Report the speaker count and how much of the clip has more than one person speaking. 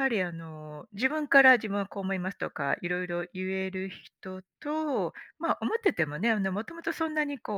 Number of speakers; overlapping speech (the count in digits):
1, no overlap